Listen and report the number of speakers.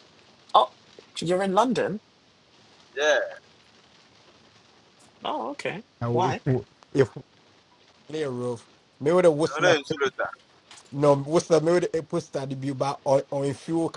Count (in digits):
3